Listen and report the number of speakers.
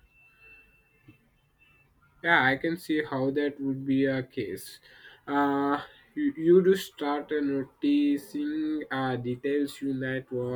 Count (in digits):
1